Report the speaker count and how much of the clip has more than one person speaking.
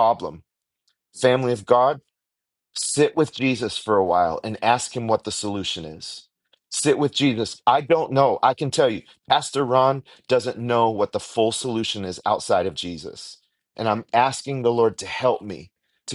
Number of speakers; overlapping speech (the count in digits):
1, no overlap